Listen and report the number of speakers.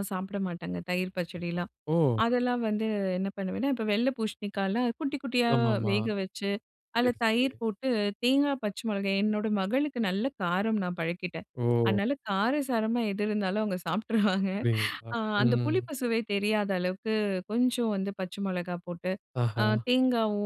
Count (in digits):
2